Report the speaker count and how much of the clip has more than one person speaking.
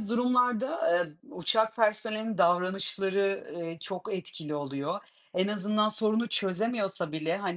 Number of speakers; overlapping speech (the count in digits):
1, no overlap